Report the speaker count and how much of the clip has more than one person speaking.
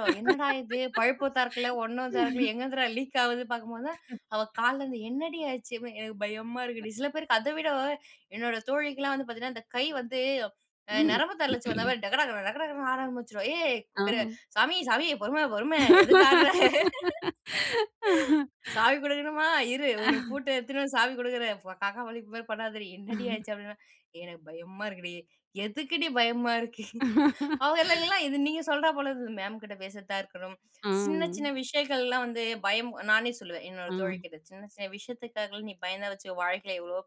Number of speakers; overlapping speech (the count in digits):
2, about 3%